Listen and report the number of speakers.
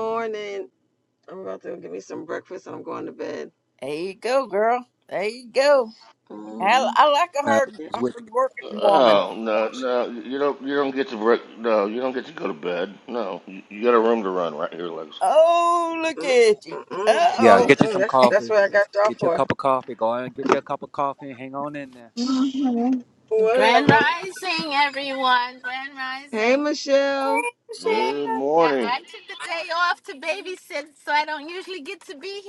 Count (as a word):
five